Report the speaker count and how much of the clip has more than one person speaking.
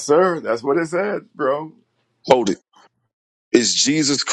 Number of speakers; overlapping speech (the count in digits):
2, no overlap